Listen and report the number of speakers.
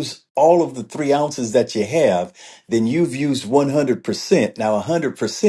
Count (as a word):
one